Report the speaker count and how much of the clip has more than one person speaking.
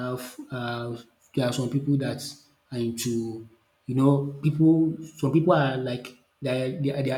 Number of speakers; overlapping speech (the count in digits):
1, no overlap